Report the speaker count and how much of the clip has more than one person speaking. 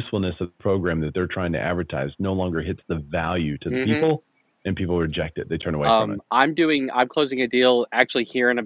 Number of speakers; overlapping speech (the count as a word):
two, about 8%